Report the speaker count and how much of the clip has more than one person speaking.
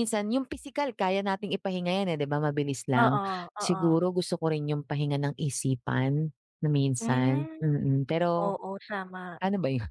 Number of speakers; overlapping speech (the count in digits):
2, about 15%